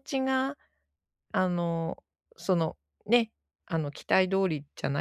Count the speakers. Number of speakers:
1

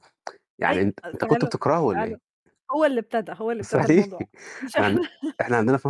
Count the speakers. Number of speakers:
2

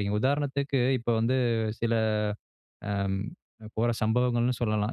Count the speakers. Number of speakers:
1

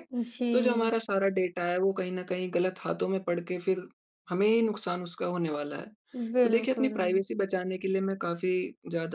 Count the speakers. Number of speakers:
2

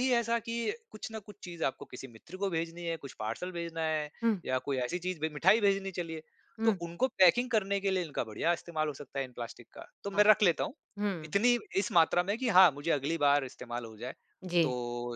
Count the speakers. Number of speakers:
2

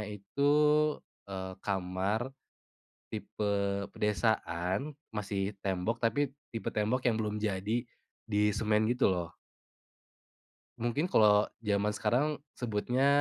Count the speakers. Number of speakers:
1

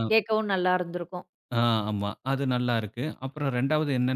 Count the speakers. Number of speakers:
2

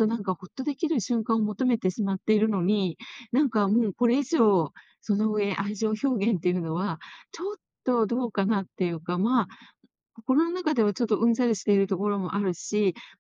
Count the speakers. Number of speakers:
1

